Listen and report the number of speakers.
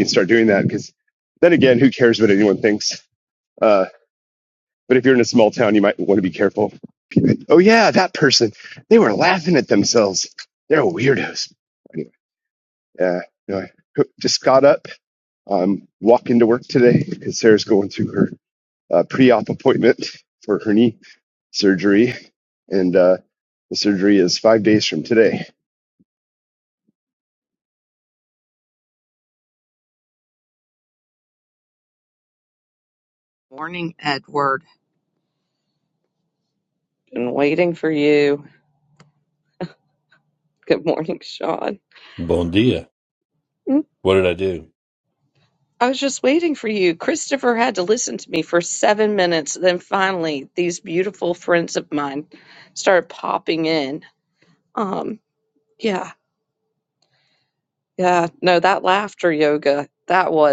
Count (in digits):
3